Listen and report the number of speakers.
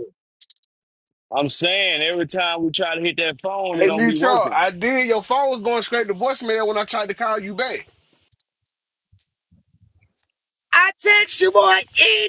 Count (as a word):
three